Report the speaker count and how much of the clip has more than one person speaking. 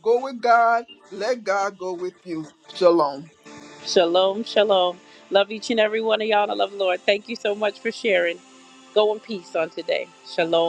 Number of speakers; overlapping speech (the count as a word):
two, no overlap